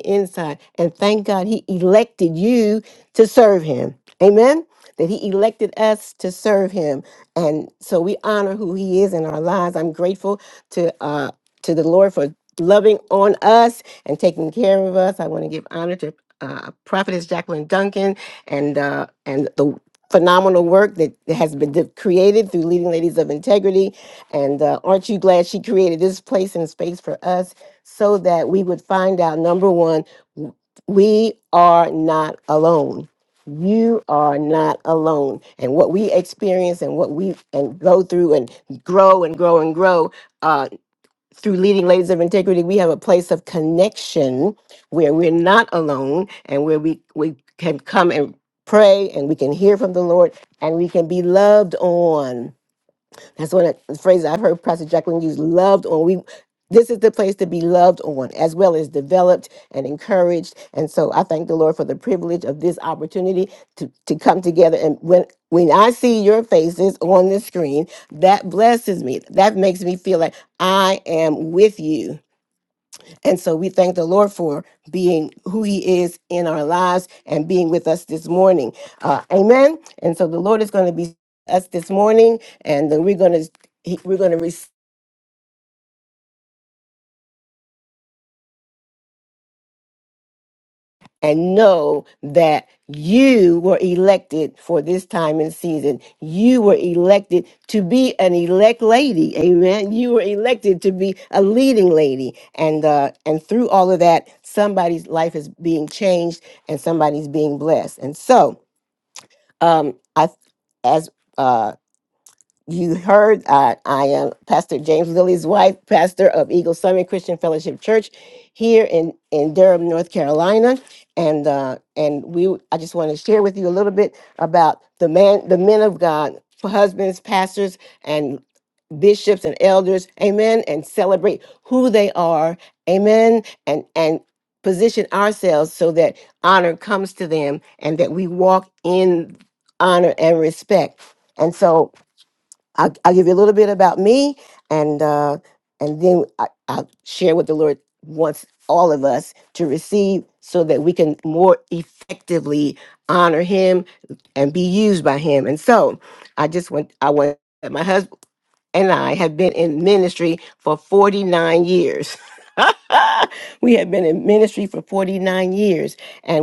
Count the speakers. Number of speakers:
1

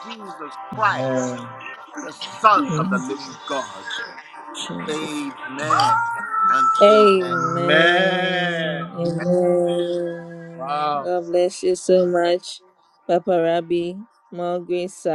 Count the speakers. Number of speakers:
3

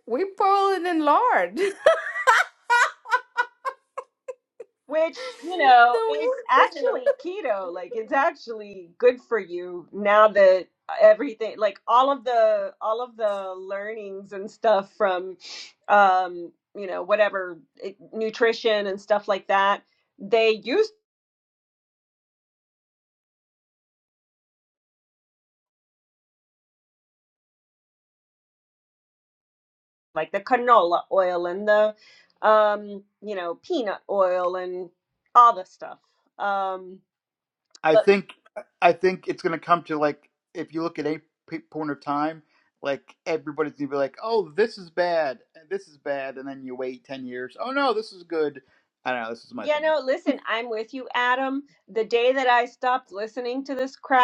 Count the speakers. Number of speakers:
3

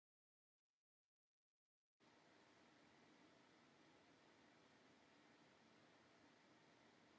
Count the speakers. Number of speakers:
0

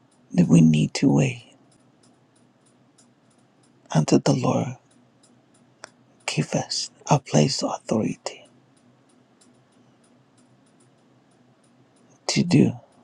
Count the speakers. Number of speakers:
1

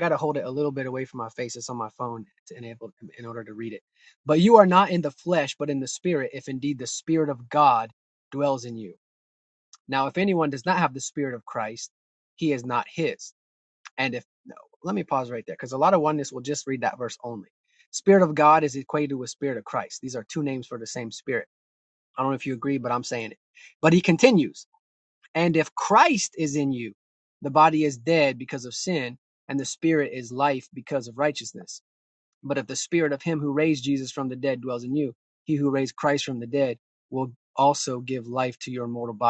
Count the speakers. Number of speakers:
1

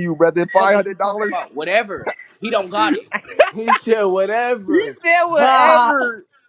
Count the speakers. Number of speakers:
3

